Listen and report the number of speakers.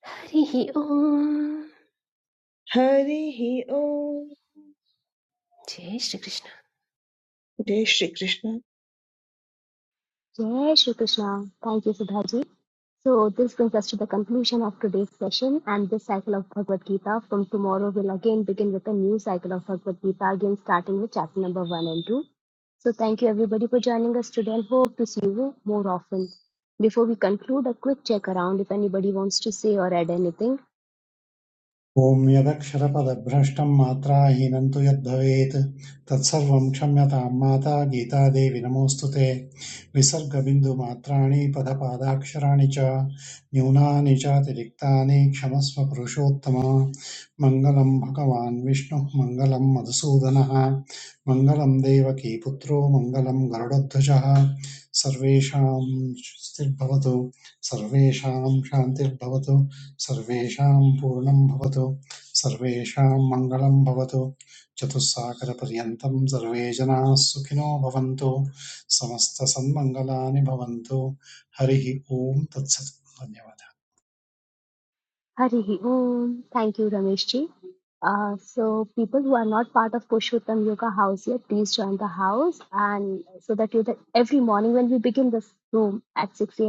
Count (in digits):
4